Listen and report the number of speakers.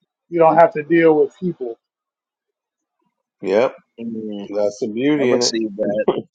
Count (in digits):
3